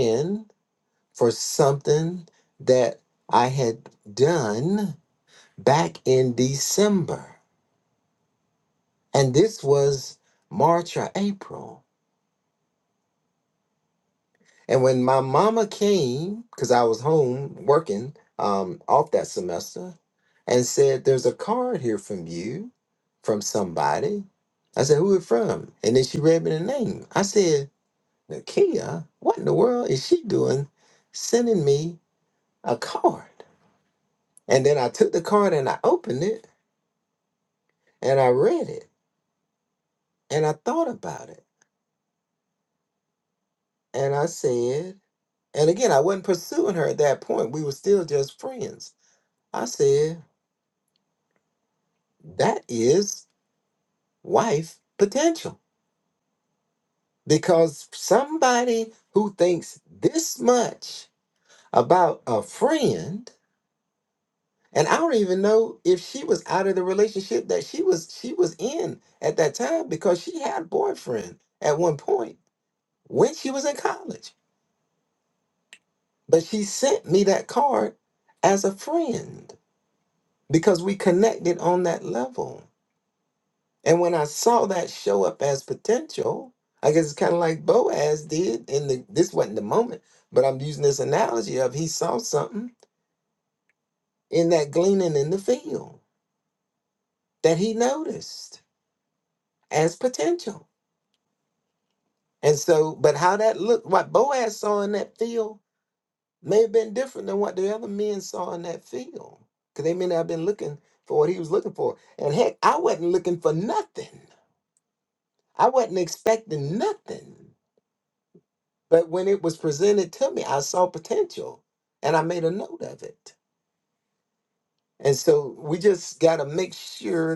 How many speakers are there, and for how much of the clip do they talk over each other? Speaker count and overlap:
1, no overlap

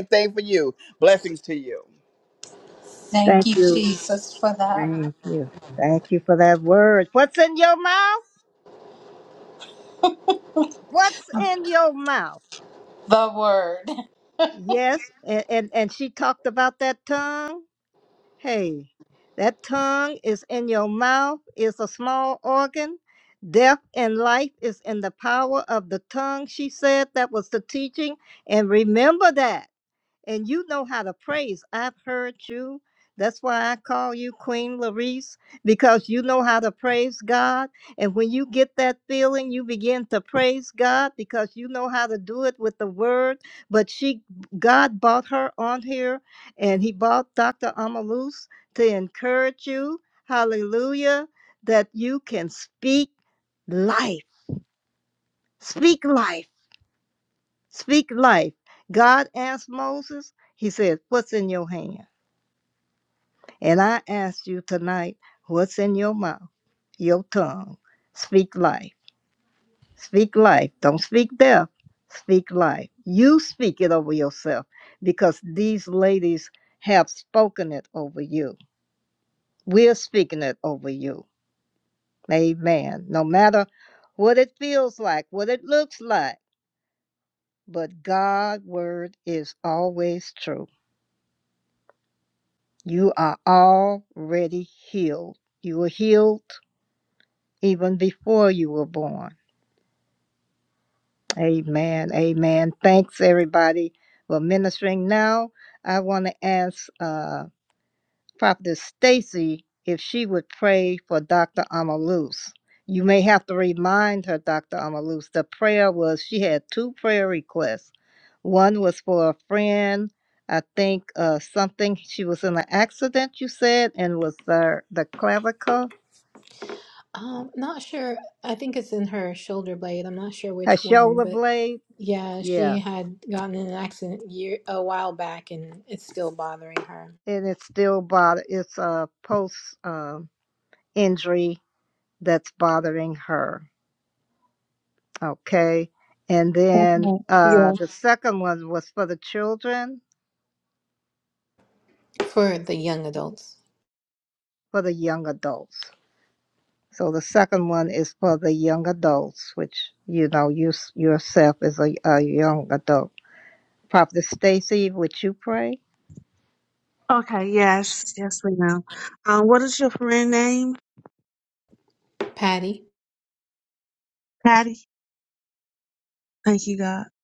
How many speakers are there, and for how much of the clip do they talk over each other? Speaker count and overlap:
5, about 2%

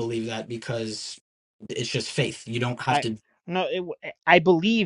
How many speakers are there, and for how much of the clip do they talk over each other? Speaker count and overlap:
2, about 3%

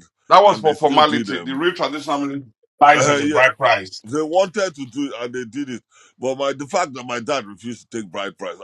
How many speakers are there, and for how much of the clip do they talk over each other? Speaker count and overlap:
2, about 19%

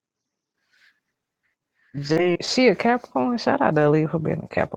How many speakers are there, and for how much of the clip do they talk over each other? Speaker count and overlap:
1, no overlap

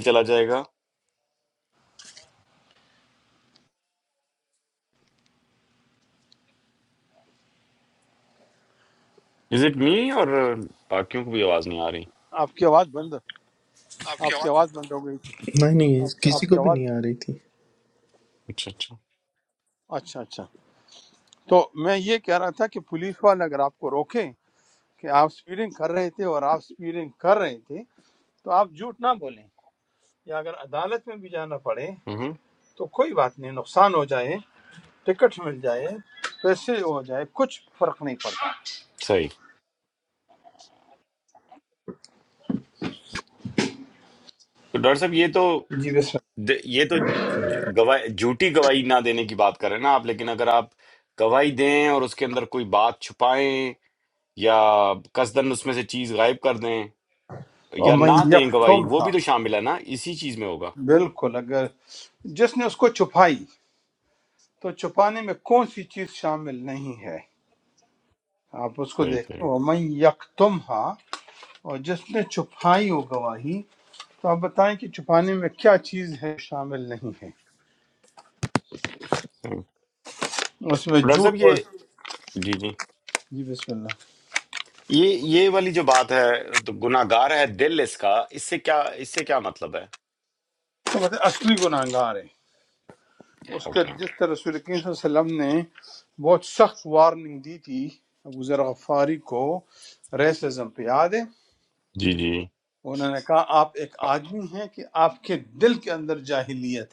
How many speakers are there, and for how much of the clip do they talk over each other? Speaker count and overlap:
3, about 3%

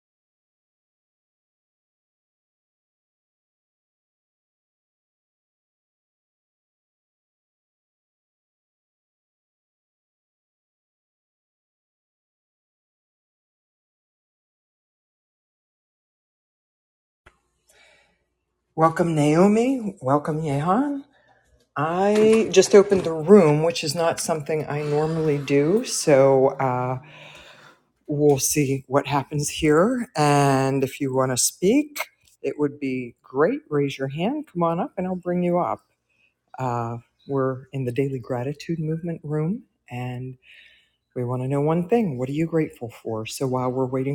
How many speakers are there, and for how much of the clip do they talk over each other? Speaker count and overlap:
1, no overlap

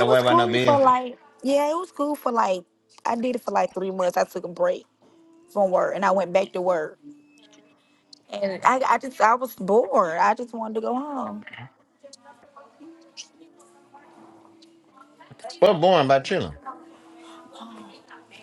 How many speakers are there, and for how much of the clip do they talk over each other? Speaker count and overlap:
2, about 5%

